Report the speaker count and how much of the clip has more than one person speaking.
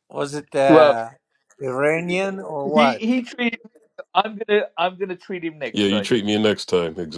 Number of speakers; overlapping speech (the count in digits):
3, about 12%